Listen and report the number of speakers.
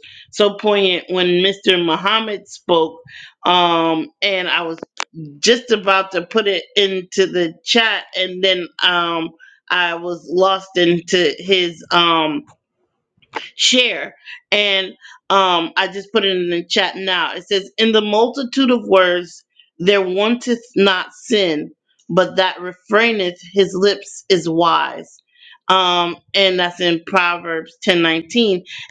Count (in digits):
1